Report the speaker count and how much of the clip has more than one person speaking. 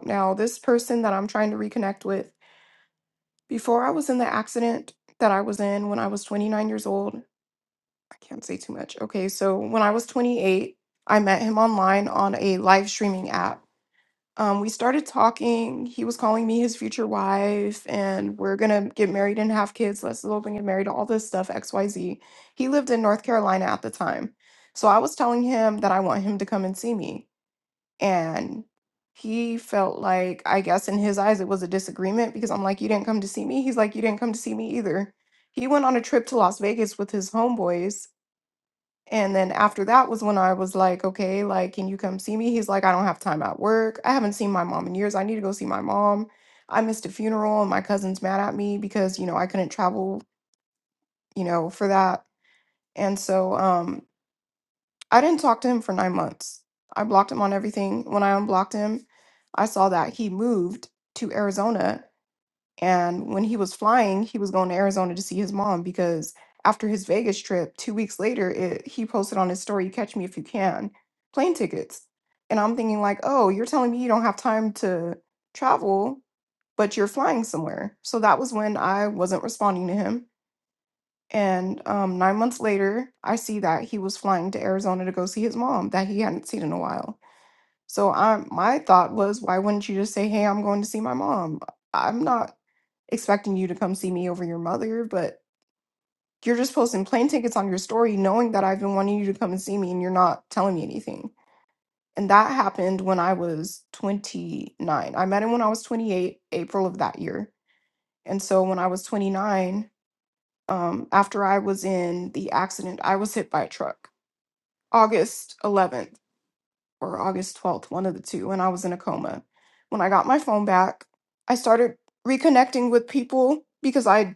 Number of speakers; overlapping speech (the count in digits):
1, no overlap